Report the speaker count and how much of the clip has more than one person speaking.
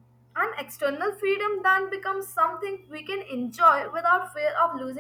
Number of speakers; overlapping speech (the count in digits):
1, no overlap